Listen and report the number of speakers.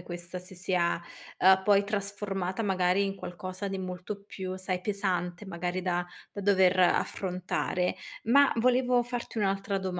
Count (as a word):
one